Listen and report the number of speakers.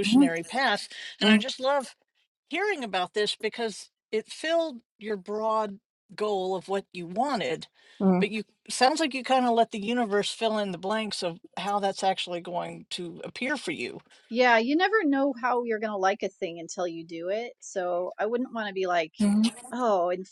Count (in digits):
3